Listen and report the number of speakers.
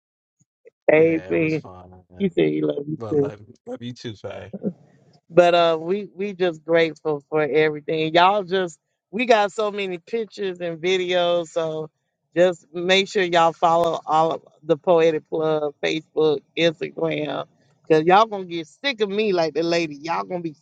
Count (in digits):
2